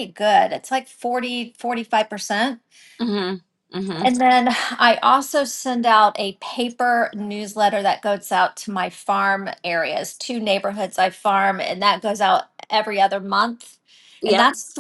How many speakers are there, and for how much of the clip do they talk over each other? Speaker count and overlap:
two, about 2%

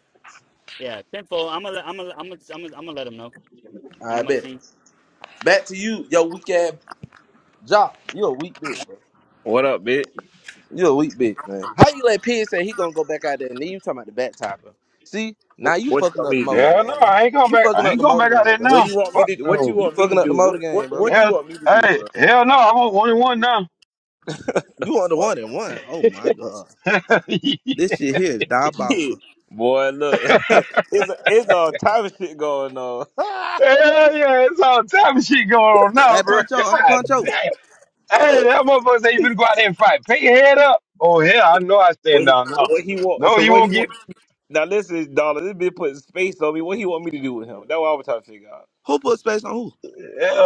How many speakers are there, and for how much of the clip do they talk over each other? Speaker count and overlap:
four, about 18%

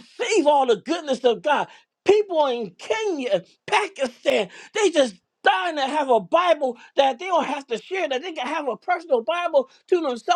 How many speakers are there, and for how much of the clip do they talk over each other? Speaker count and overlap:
one, no overlap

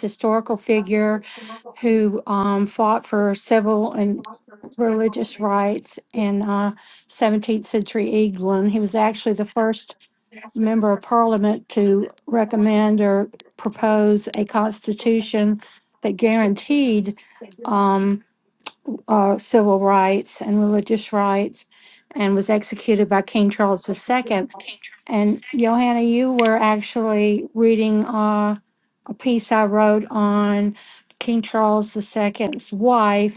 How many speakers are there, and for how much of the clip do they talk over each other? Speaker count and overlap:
one, no overlap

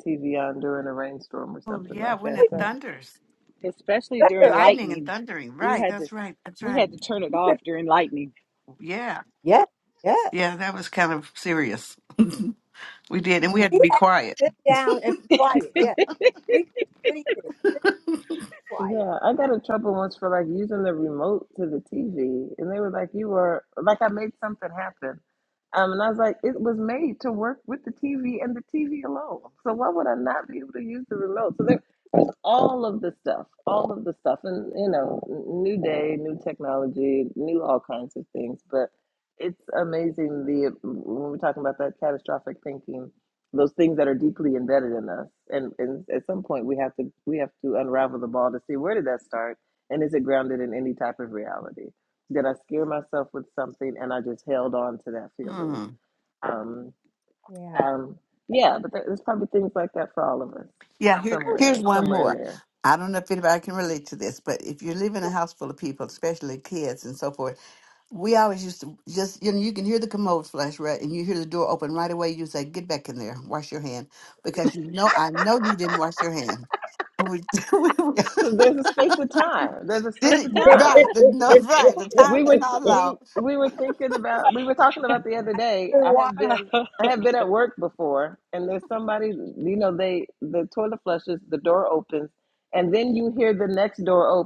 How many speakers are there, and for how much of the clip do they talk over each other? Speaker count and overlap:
four, about 7%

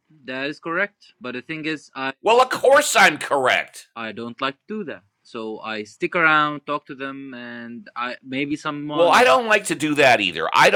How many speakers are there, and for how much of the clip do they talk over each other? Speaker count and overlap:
two, about 3%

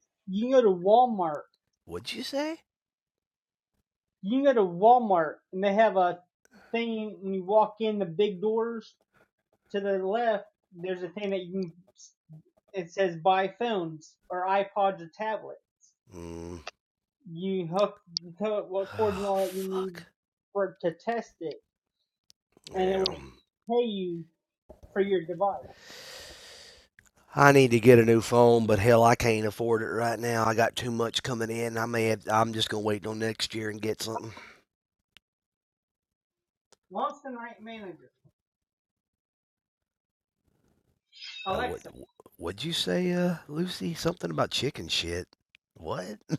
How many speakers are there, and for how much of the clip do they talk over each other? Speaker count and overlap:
two, about 4%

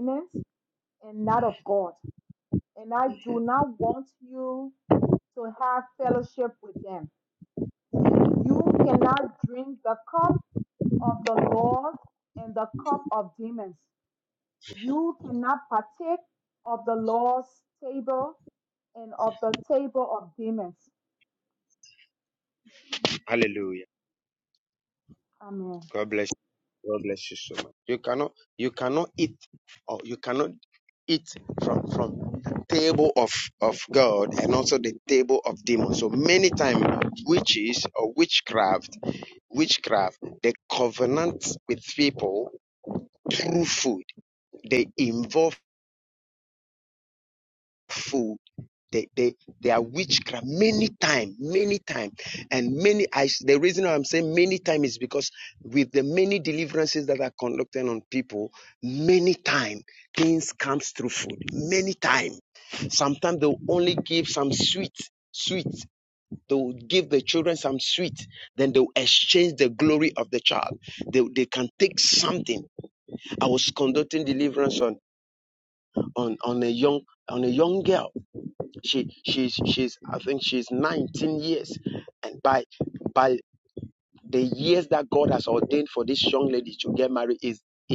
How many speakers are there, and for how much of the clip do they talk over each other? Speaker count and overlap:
two, no overlap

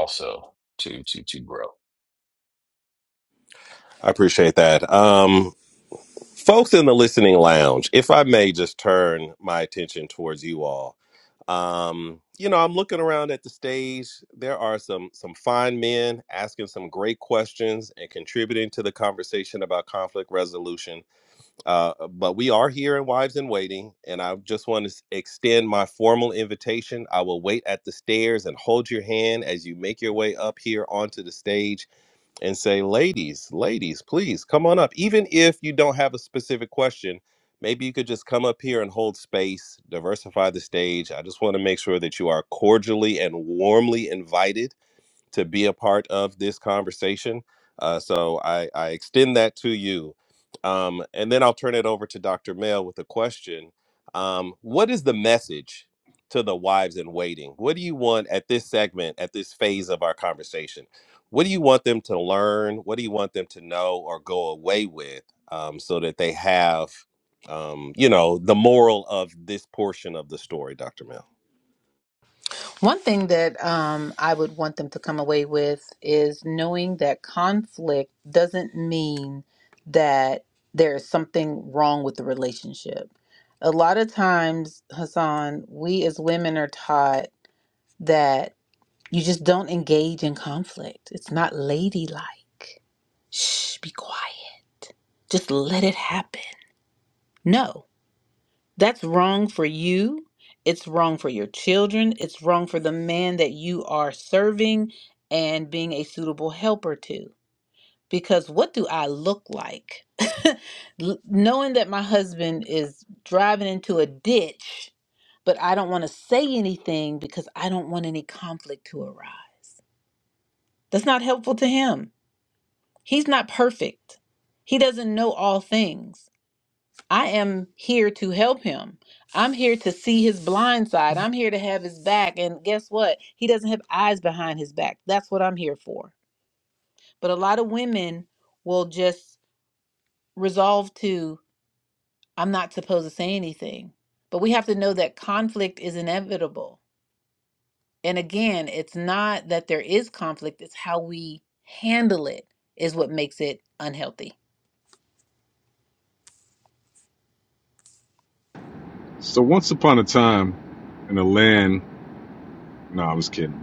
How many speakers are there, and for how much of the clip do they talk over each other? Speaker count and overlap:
four, no overlap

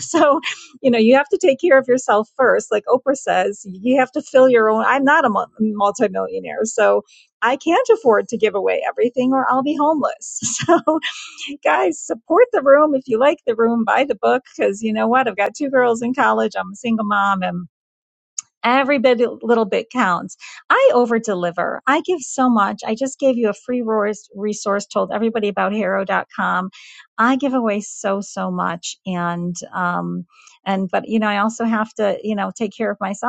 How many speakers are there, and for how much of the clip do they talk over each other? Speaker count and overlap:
one, no overlap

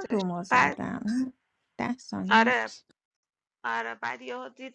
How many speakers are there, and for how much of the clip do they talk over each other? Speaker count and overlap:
two, about 25%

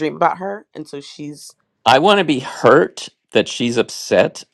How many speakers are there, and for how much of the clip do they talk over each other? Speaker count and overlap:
two, no overlap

